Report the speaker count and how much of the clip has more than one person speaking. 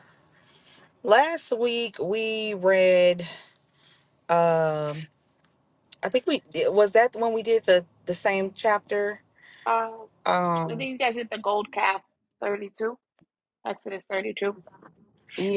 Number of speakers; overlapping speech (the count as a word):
two, about 1%